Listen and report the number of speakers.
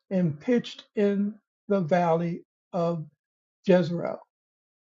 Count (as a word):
one